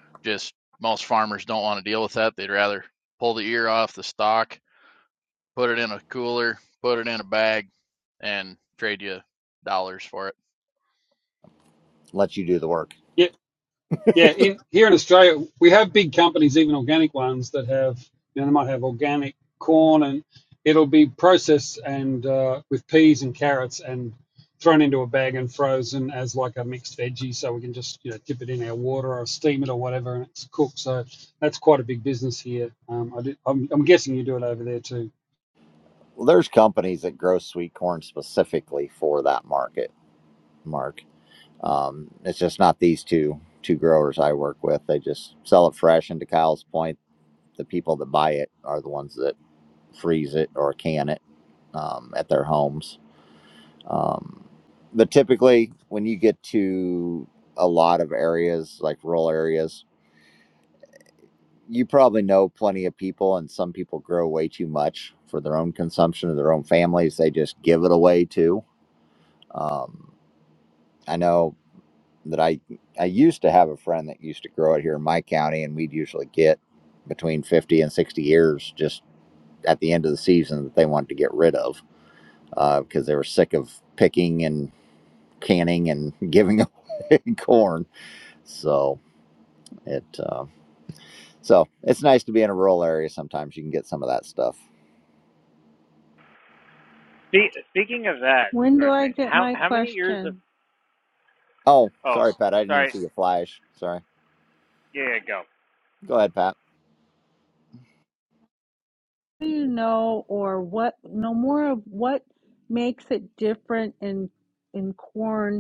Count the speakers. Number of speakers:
5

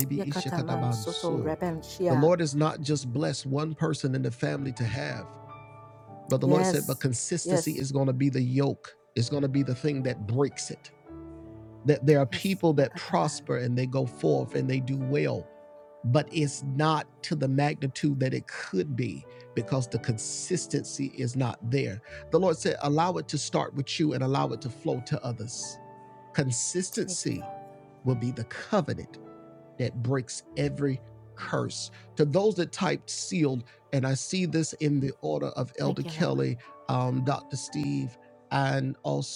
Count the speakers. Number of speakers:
2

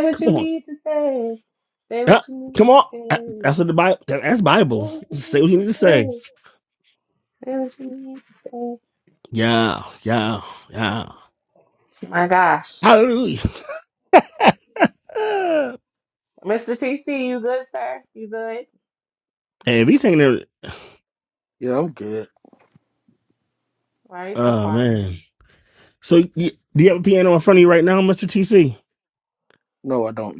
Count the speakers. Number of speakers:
3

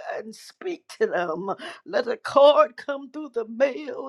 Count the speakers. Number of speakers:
1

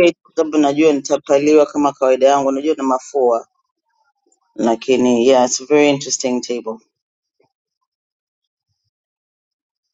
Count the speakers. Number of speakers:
1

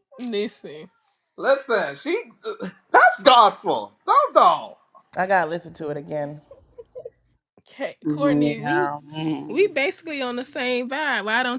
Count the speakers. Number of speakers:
4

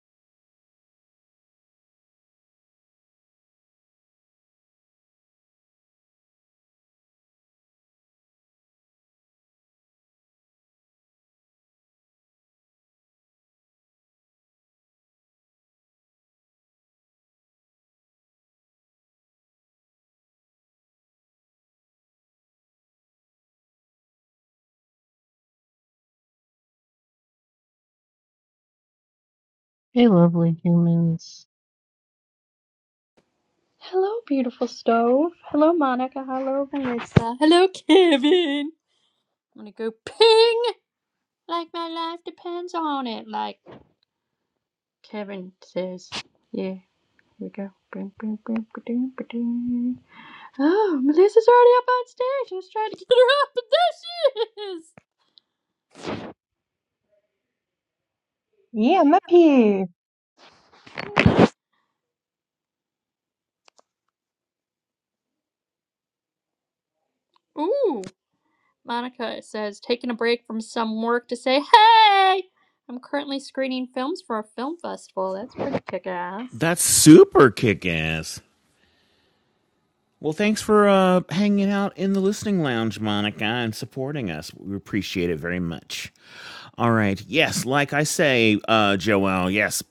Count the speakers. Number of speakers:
4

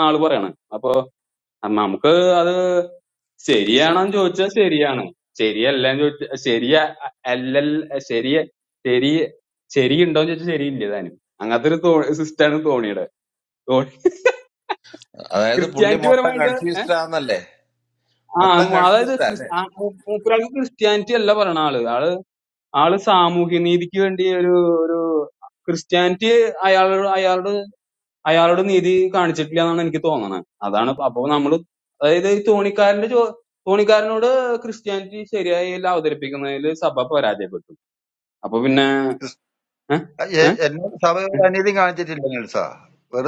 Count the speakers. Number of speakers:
3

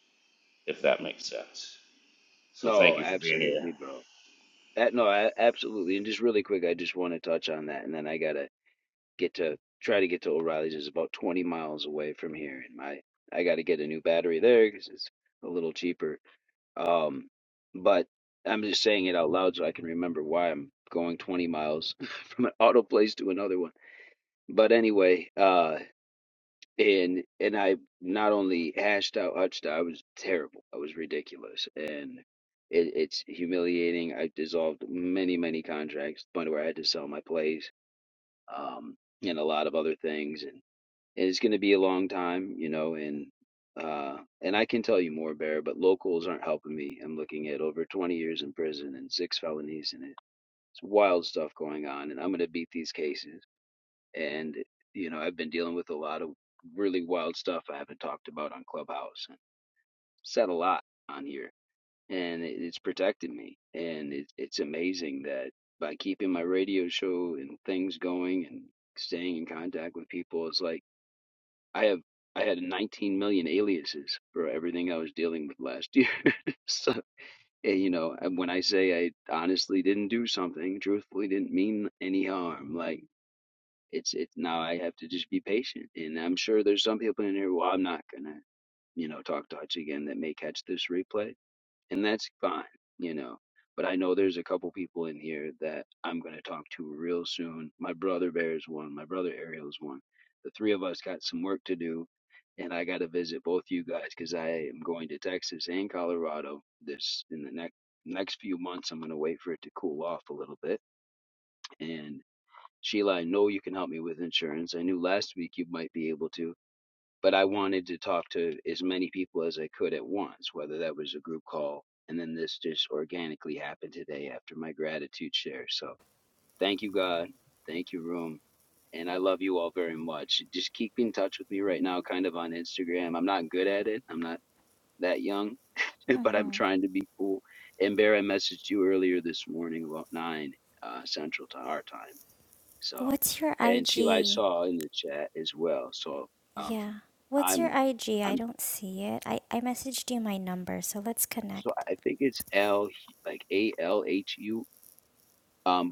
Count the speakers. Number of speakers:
3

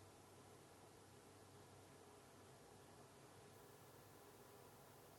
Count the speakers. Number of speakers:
0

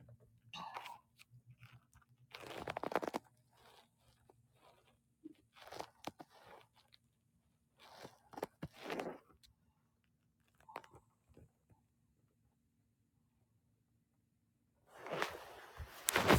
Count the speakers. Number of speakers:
0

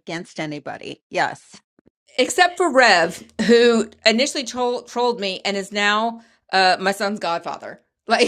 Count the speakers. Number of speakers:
2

